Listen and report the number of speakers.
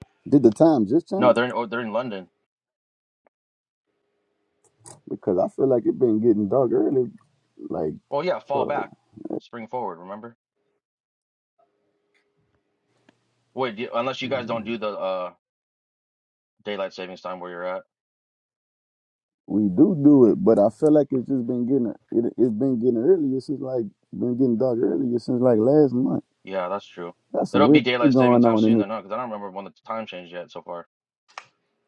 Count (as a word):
two